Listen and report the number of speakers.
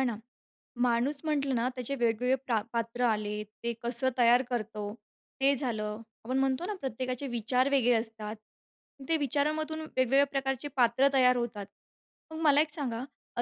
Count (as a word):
one